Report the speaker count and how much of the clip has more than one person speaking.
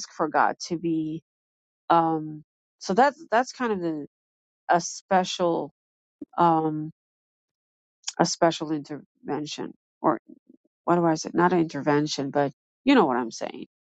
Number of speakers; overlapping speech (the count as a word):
one, no overlap